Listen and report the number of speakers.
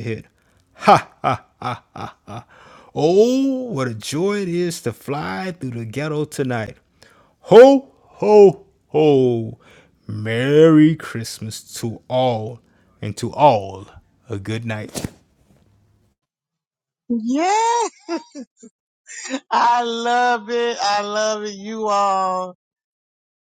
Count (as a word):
two